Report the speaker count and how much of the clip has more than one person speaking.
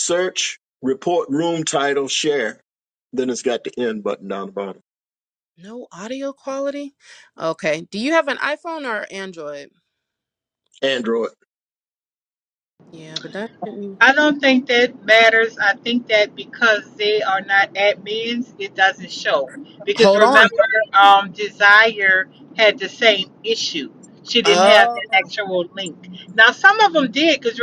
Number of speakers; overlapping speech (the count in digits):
3, about 5%